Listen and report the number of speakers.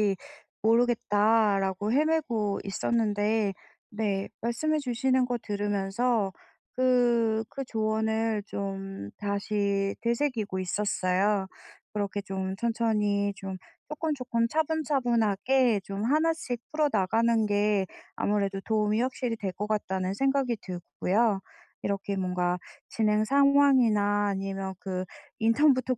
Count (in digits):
1